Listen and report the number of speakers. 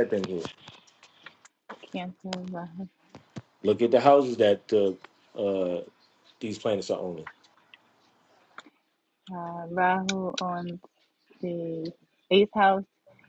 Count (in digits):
2